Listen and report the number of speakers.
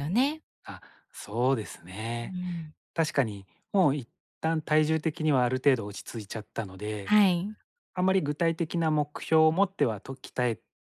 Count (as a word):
two